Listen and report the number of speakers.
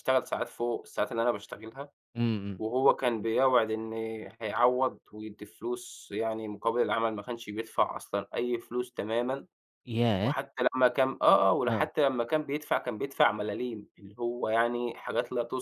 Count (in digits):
2